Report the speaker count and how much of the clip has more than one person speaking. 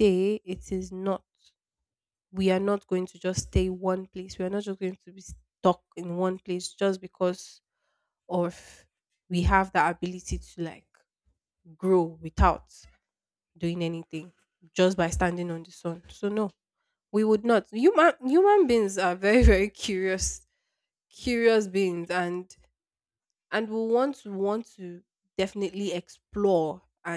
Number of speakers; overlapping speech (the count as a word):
one, no overlap